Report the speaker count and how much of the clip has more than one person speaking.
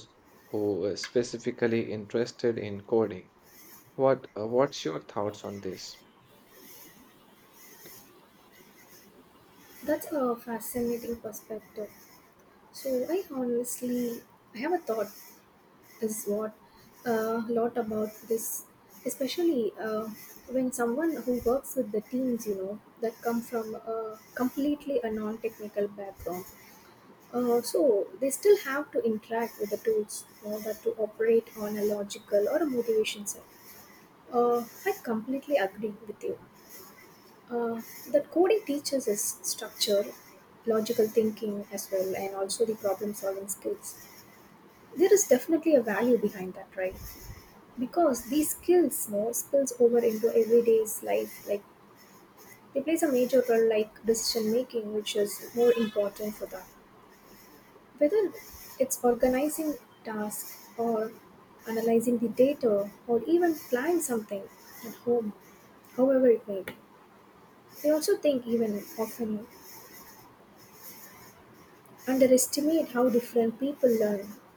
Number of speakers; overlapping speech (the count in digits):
2, no overlap